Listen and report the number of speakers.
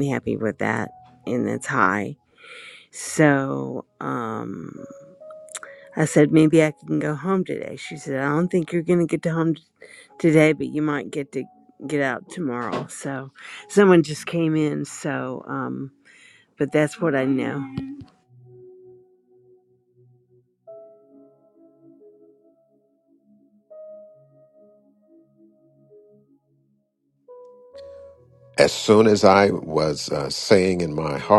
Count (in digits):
2